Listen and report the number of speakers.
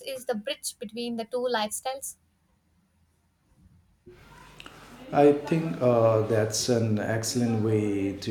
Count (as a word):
two